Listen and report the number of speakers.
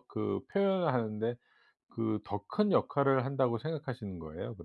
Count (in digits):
1